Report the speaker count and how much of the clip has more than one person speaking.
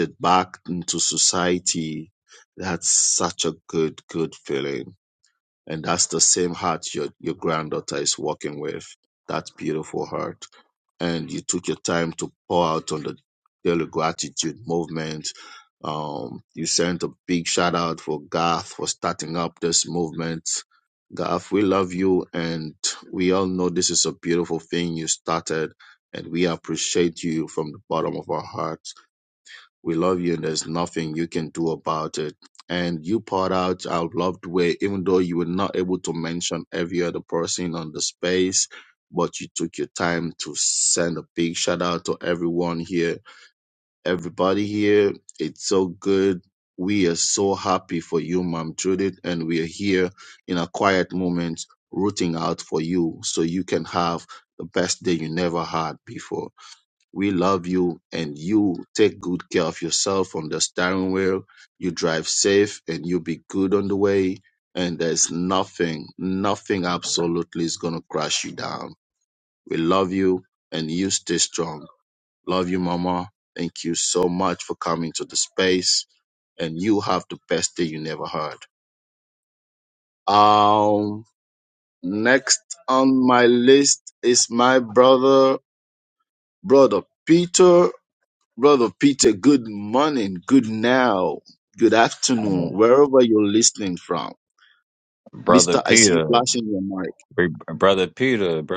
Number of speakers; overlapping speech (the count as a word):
two, about 1%